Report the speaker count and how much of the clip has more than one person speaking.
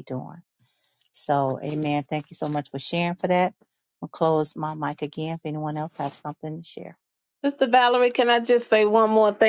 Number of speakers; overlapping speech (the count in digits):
2, no overlap